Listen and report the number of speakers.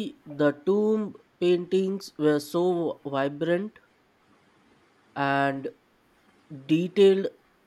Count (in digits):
1